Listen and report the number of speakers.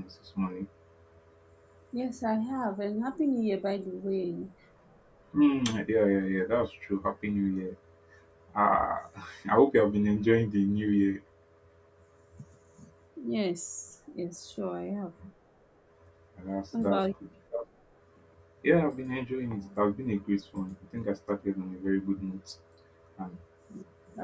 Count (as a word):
two